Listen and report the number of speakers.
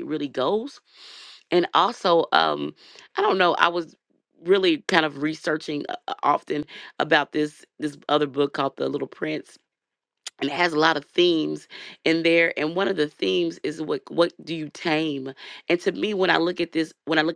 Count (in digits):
1